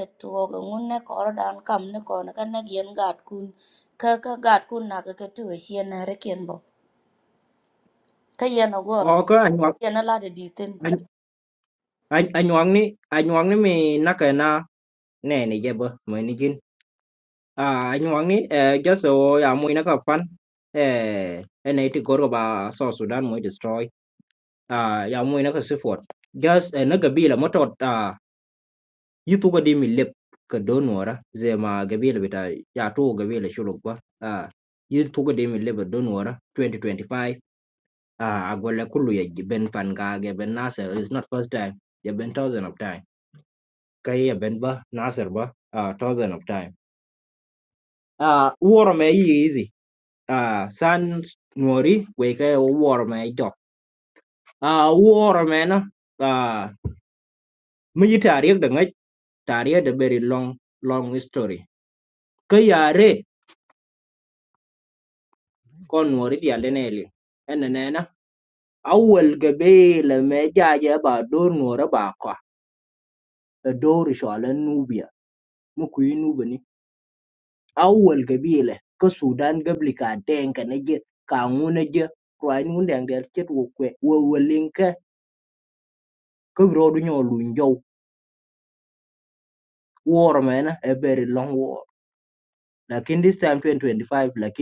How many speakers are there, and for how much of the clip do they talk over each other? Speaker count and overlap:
2, no overlap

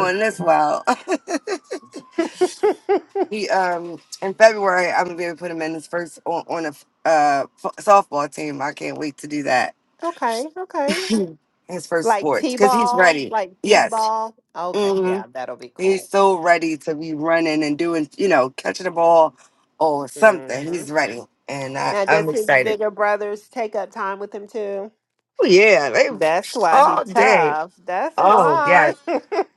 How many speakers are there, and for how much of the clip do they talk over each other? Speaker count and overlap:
2, about 18%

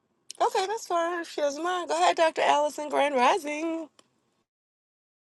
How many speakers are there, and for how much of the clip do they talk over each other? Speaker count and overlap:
1, no overlap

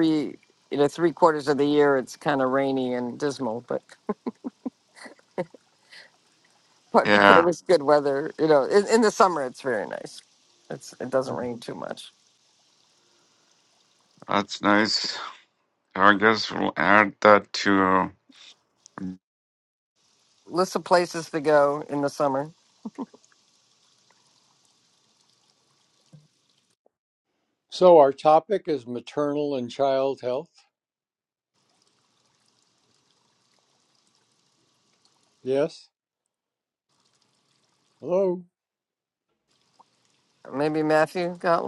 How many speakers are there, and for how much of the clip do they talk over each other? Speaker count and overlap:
3, about 1%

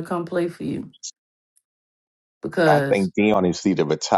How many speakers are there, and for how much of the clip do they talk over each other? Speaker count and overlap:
2, about 7%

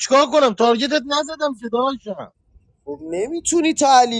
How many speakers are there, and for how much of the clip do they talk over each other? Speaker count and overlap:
2, no overlap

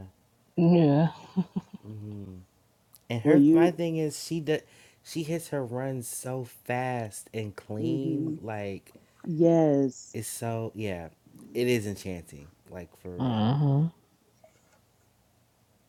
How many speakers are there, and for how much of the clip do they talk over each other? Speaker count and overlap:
3, about 9%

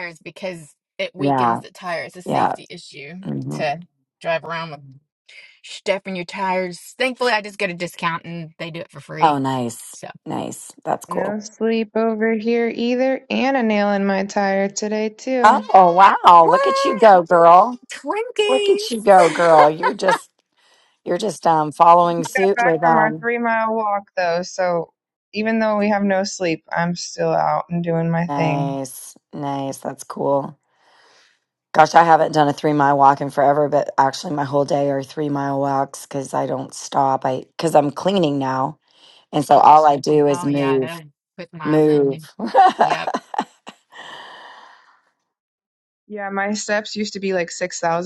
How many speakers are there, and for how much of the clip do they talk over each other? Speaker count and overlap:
3, about 10%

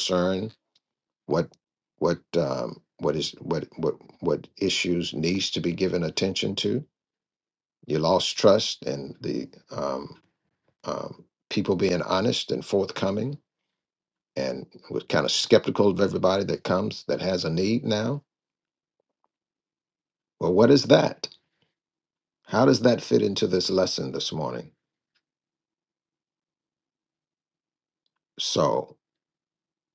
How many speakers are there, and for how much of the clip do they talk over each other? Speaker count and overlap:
1, no overlap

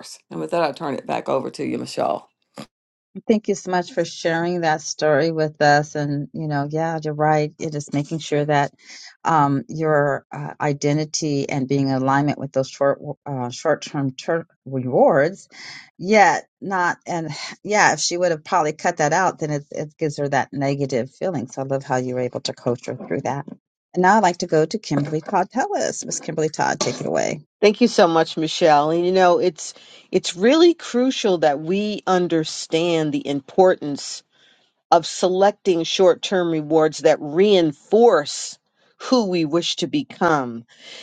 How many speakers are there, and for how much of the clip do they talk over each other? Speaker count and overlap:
3, no overlap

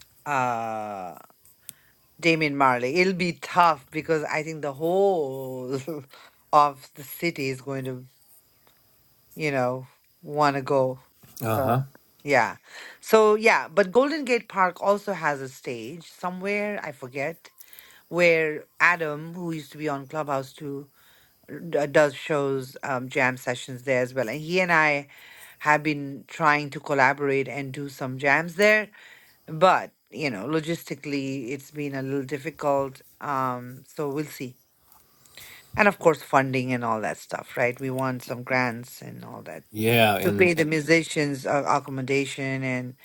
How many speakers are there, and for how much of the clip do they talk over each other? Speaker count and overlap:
2, about 2%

